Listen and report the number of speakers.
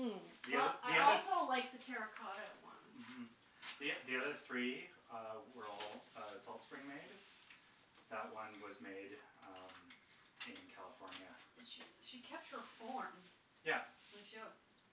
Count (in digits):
2